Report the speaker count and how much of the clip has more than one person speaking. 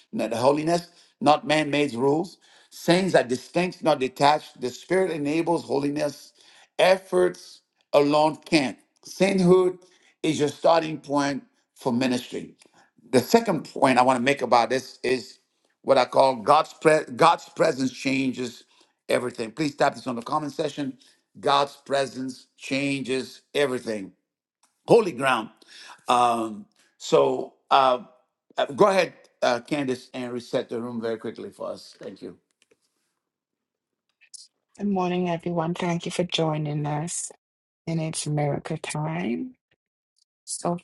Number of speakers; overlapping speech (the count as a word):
two, no overlap